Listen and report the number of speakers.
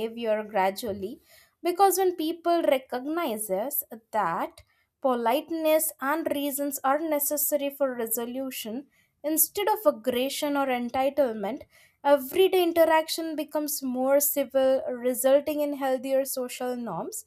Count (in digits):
1